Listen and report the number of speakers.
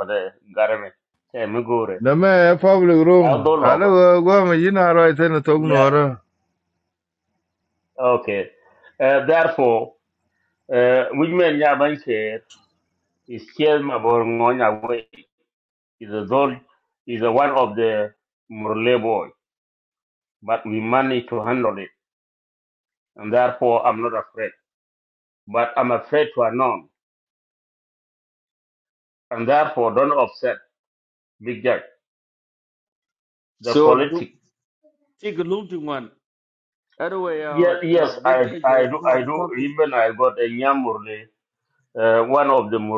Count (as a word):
three